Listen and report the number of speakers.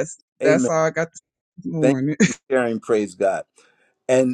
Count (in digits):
2